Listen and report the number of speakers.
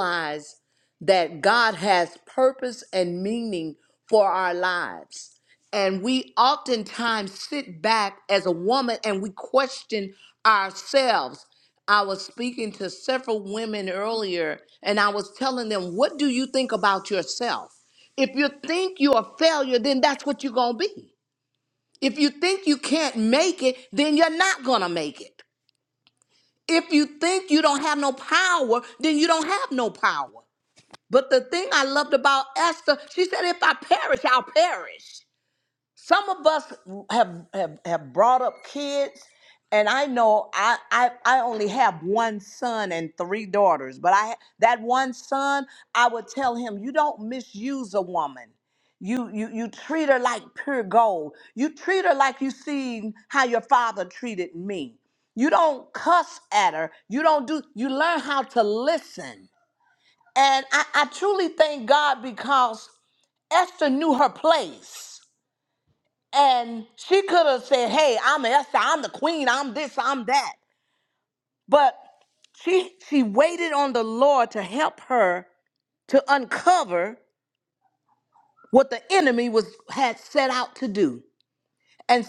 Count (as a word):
one